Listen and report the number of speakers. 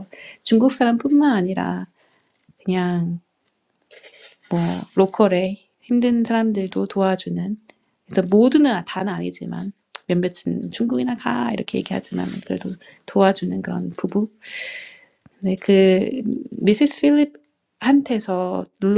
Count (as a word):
one